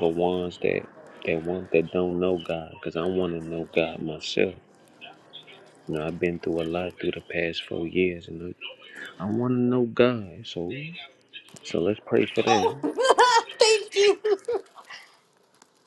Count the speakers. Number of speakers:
2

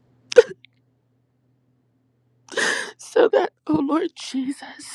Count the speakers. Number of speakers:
1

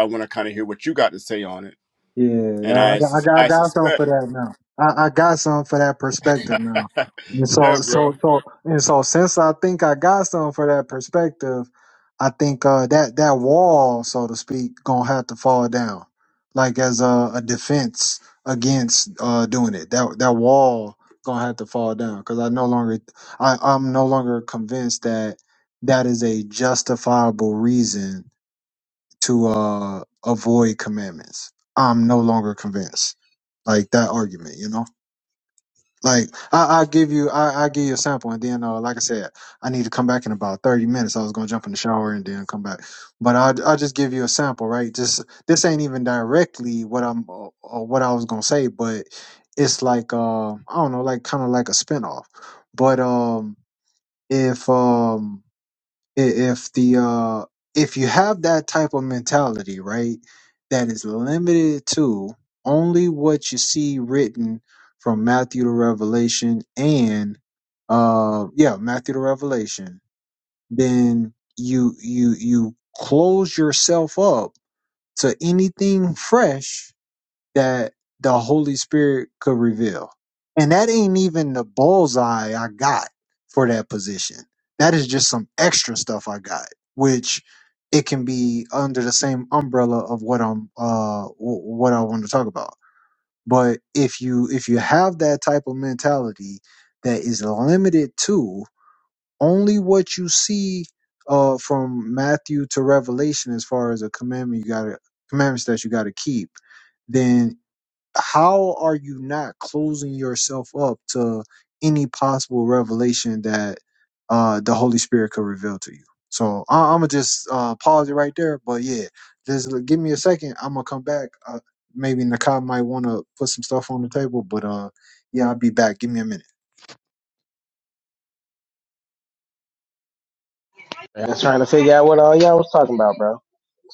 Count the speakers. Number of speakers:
3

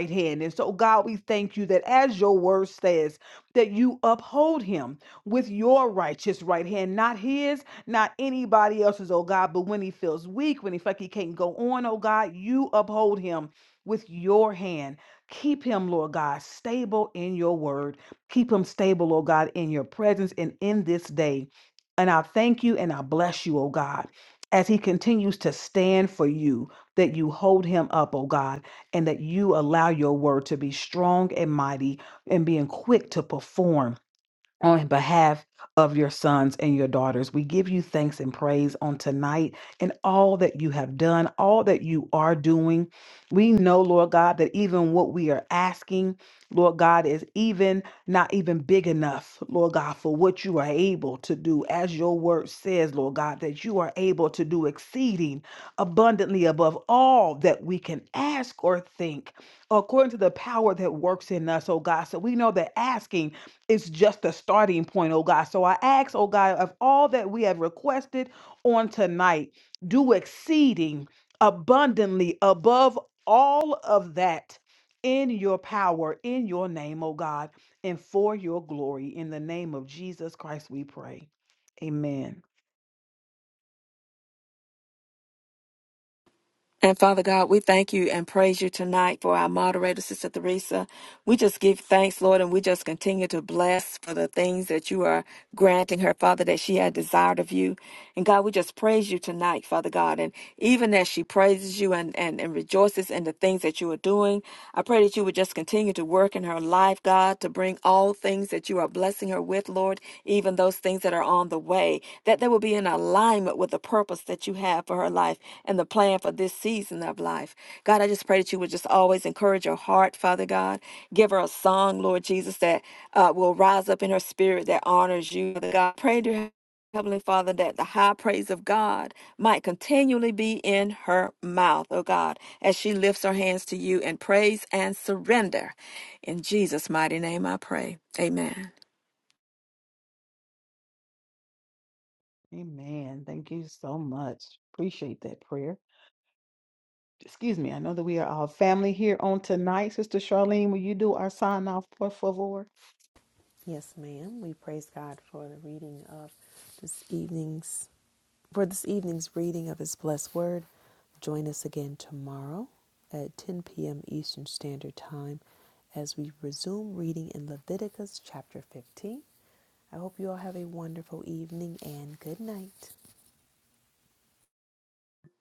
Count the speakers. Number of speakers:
3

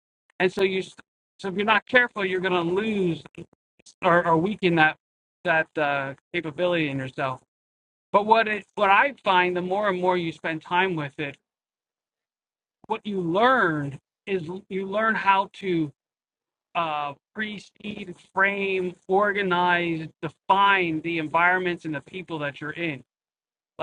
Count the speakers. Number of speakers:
1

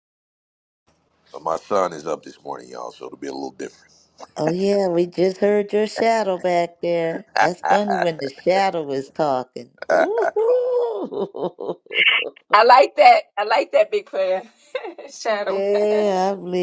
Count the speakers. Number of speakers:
3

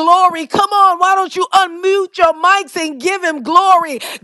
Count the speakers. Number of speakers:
1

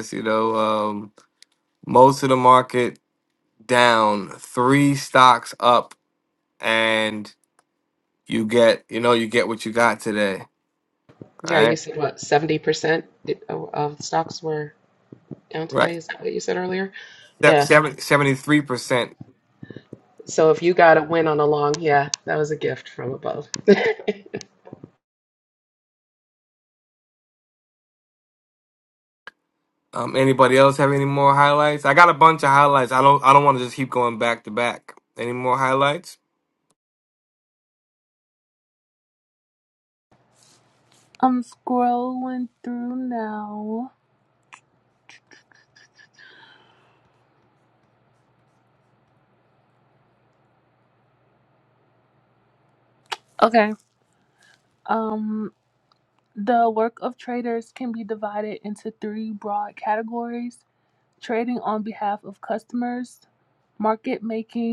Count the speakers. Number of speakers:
3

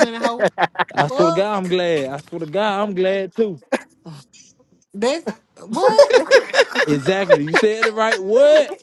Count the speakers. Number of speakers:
2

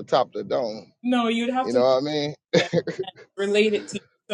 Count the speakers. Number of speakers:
2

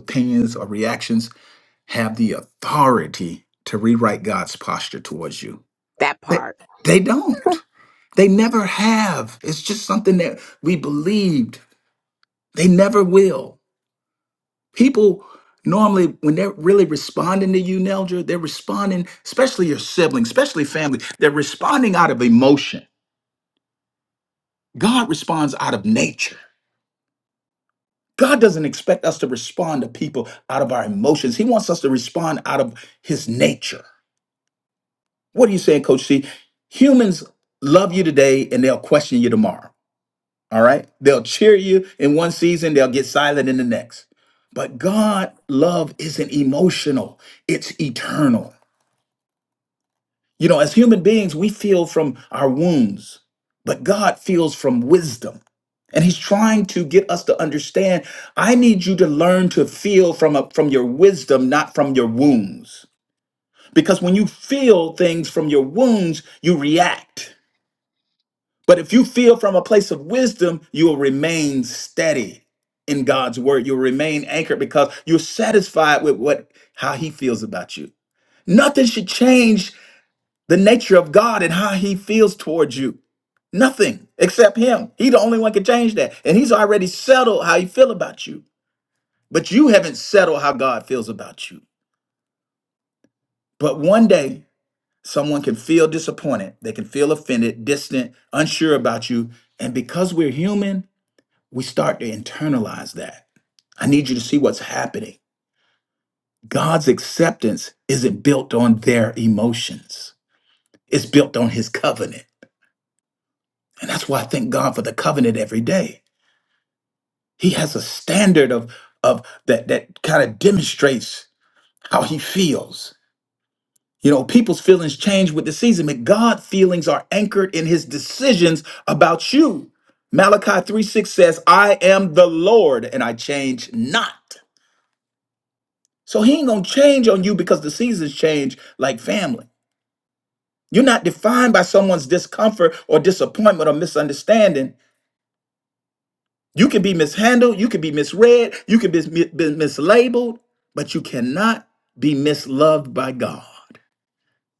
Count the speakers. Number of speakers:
1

